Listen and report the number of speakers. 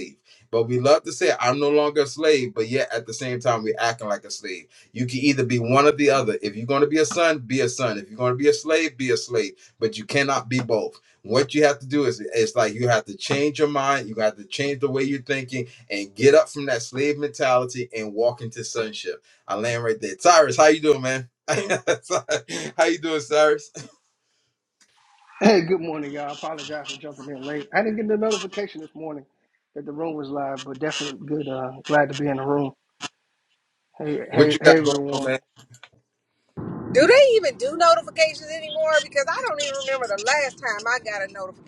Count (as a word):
three